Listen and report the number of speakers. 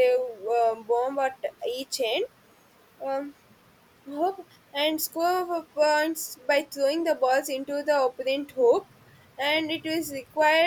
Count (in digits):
1